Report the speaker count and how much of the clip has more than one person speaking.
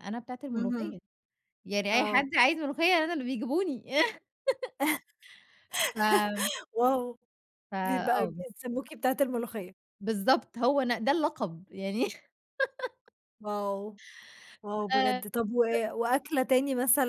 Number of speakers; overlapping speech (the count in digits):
2, about 10%